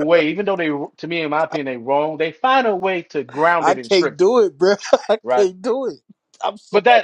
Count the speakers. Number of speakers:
2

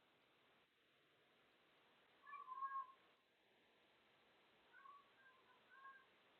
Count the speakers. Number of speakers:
0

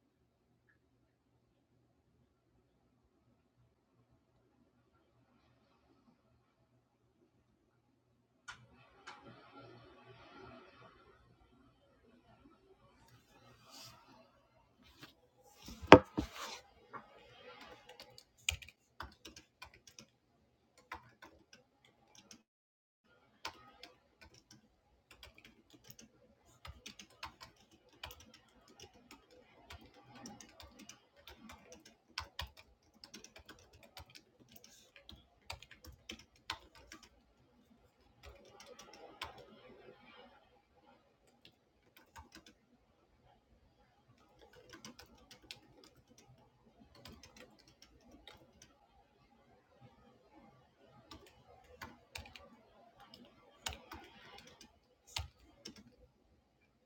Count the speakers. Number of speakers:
0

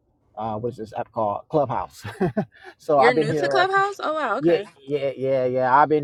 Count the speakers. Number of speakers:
2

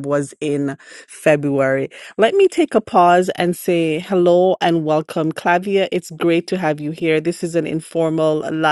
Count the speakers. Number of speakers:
1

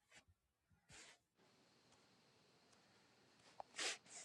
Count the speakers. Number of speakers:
0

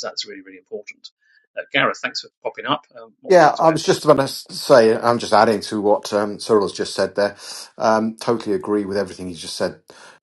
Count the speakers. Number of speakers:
2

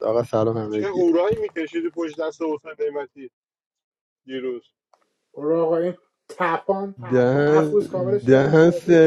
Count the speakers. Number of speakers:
3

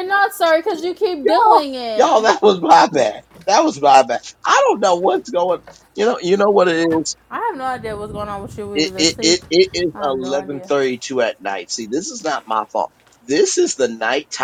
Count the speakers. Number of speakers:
2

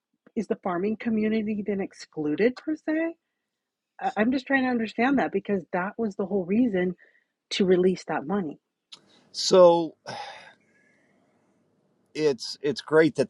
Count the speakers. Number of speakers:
2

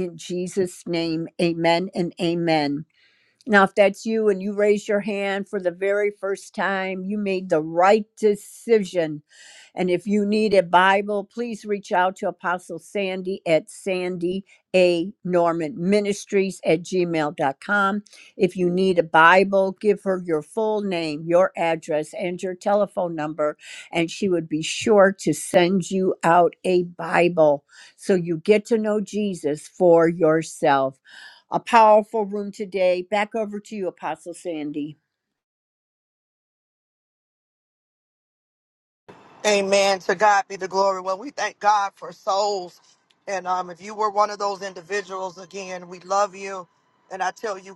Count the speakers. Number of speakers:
2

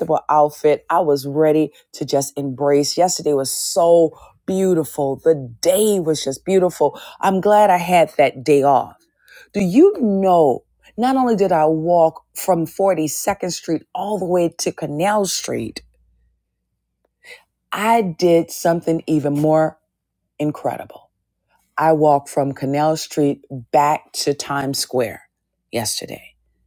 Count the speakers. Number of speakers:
1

